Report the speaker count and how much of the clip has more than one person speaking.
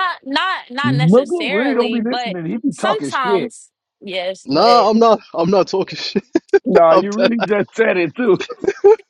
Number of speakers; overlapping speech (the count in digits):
3, about 35%